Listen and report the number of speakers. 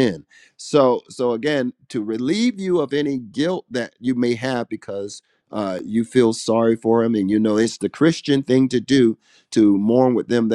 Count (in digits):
1